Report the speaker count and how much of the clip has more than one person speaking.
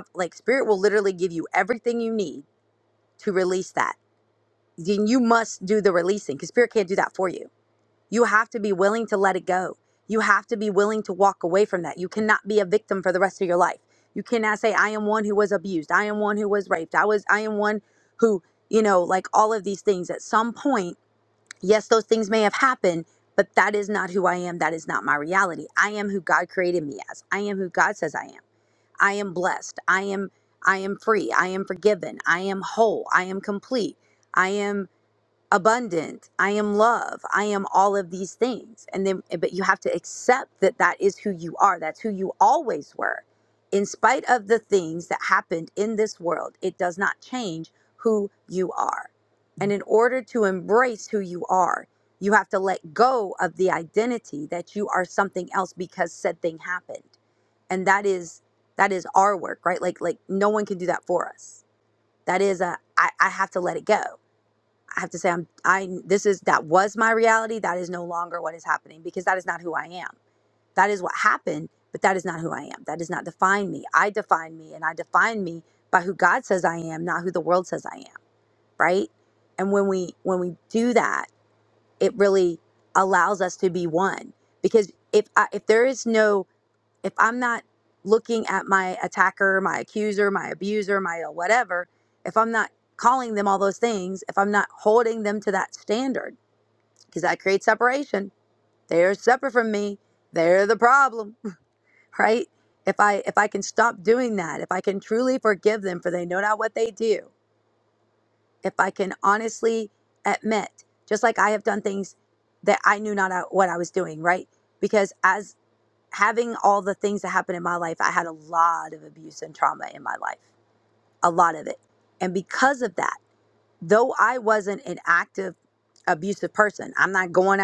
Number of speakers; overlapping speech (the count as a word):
one, no overlap